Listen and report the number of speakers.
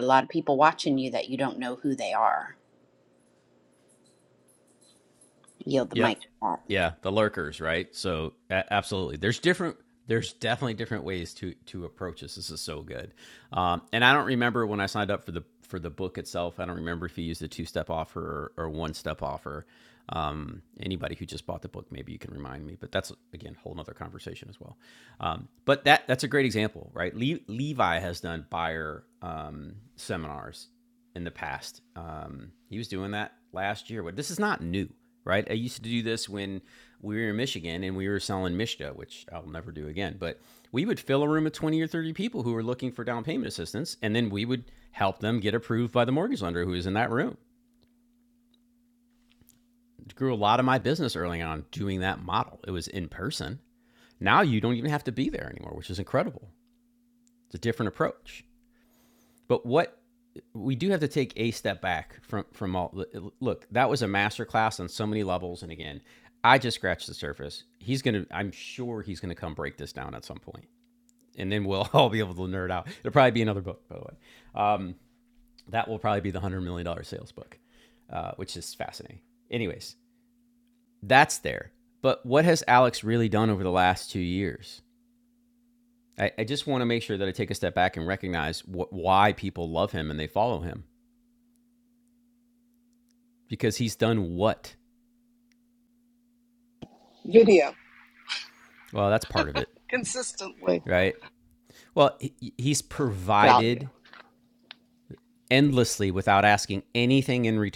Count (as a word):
three